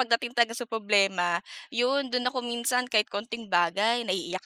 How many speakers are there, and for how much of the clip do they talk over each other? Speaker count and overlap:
1, no overlap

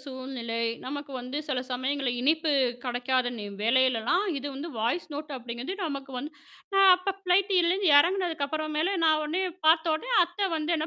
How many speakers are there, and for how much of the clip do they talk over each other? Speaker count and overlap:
1, no overlap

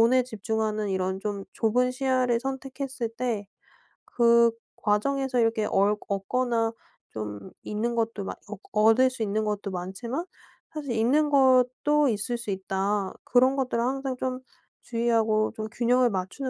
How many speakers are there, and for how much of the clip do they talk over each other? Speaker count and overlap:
1, no overlap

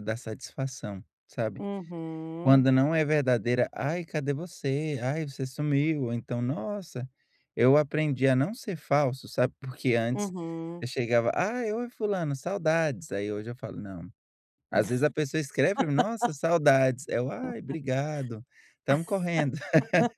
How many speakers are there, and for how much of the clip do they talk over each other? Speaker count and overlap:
2, about 1%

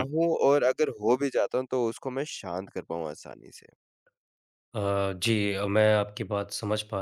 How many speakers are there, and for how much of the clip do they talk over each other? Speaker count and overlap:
2, about 1%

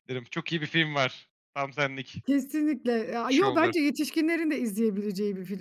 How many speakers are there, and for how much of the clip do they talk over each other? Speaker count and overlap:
2, no overlap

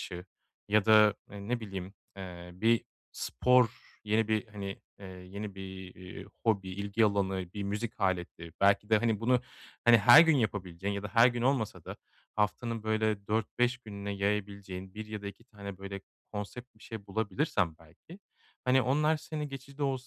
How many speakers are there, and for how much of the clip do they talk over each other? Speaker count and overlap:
1, no overlap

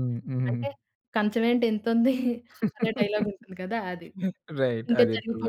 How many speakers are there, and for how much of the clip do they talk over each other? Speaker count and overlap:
2, about 15%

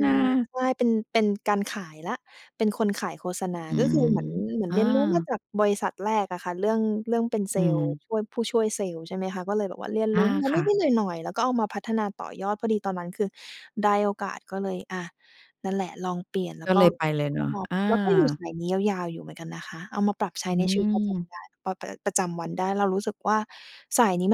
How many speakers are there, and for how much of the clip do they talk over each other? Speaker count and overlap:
2, about 16%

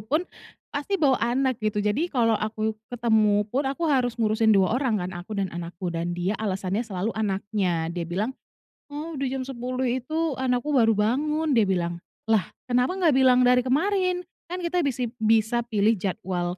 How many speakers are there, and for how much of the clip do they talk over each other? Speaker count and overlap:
1, no overlap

